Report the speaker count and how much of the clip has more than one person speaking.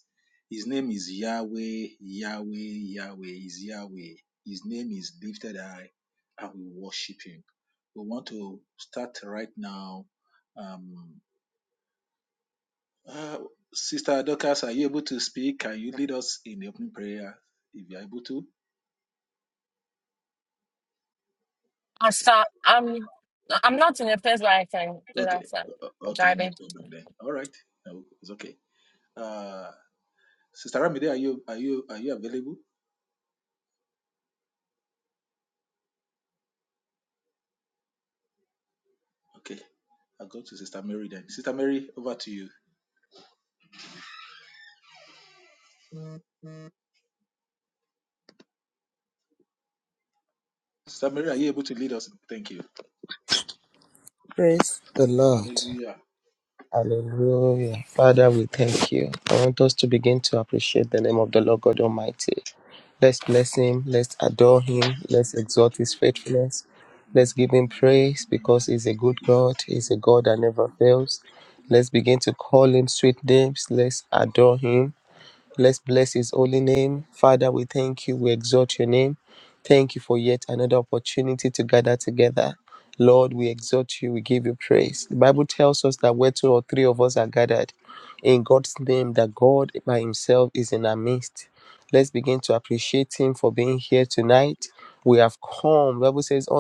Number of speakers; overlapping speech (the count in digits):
3, about 1%